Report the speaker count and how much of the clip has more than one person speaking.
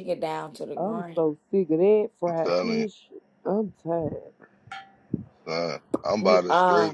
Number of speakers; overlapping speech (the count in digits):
3, about 25%